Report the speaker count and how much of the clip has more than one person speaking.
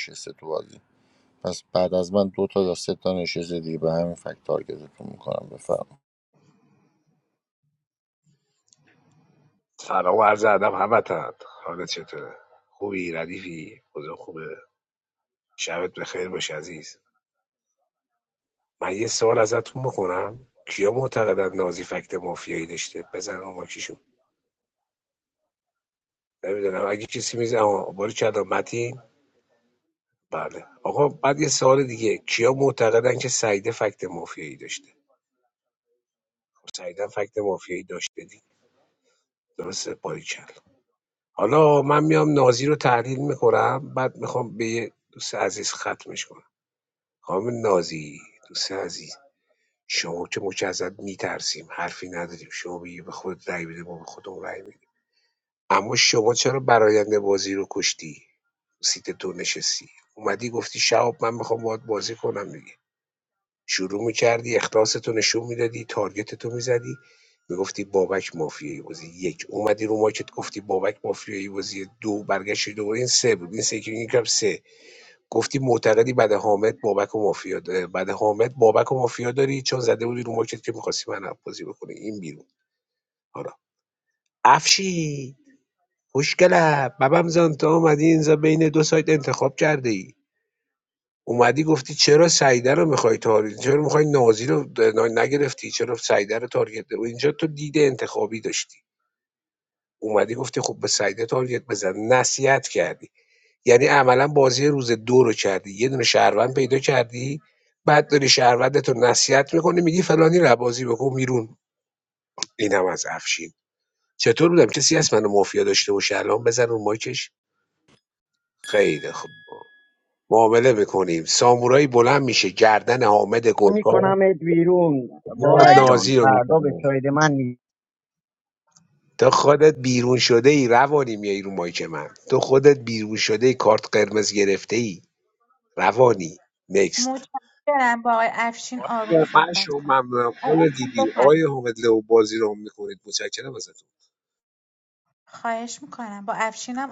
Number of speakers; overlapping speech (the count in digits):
4, about 2%